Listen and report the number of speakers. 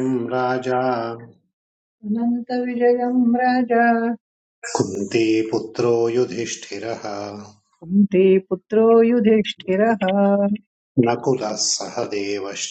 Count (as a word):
two